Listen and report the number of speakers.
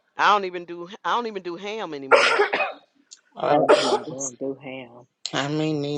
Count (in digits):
3